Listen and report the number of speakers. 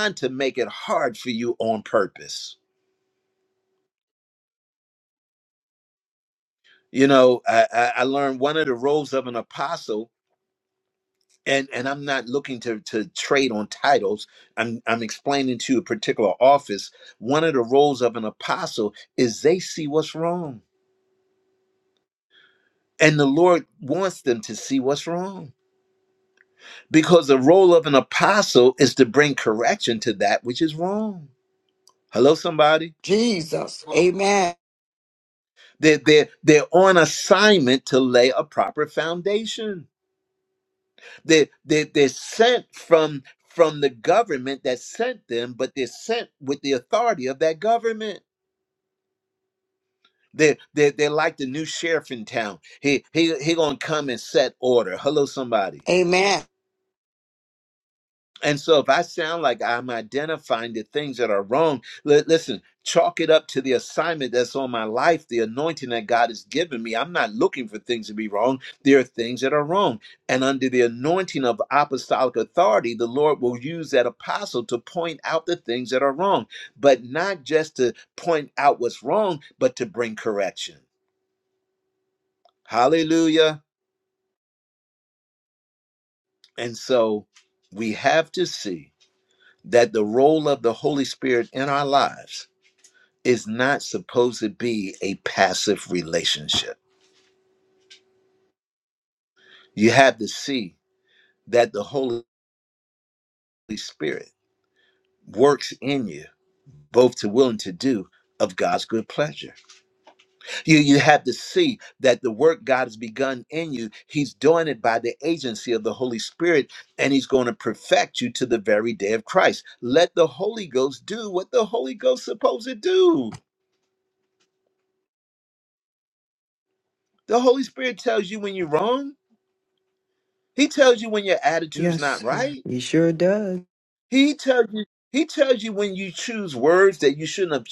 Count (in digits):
3